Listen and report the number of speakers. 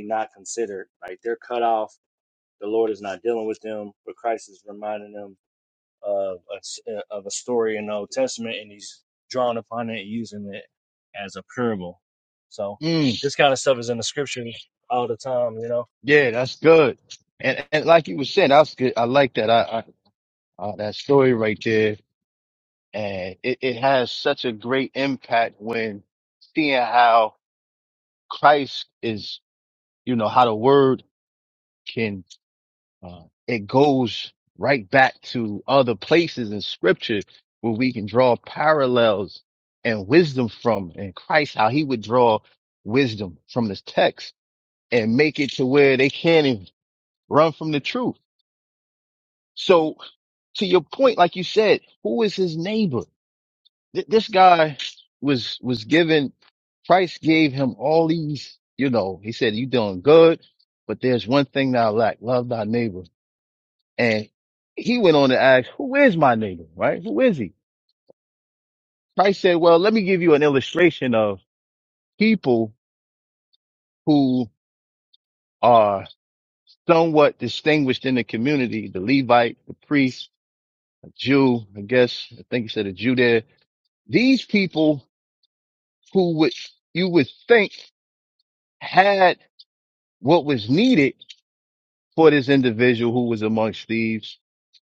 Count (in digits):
2